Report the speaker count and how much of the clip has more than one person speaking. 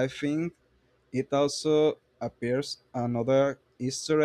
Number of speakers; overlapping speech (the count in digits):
1, no overlap